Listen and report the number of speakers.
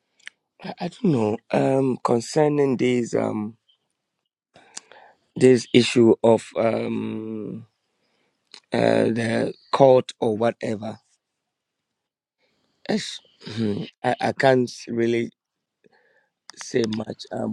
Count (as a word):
one